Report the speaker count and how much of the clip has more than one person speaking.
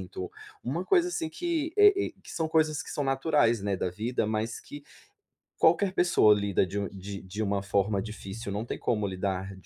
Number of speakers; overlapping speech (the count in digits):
1, no overlap